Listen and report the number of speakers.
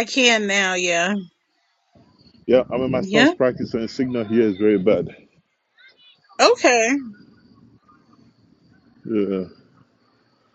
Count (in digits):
2